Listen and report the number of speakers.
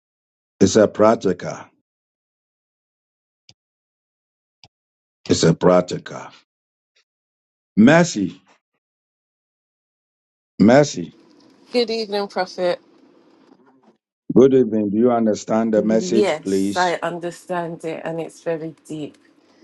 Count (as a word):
two